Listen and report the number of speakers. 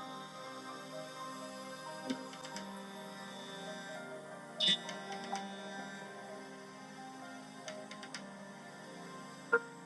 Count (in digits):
0